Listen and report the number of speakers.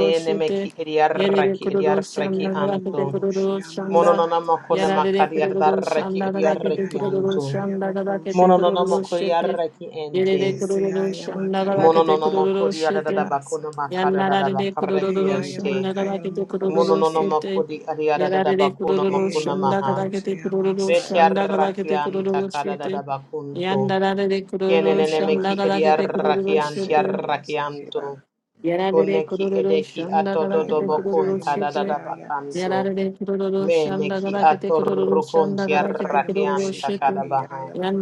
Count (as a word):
three